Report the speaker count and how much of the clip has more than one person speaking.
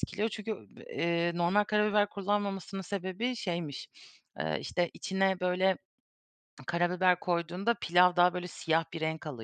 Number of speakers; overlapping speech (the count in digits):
1, no overlap